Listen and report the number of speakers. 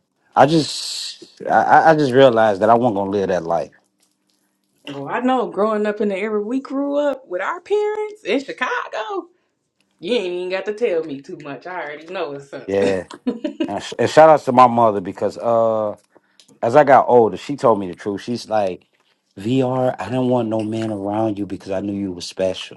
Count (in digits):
2